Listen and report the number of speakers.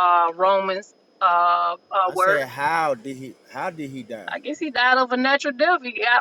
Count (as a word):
two